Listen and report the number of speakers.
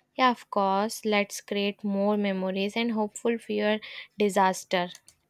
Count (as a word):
one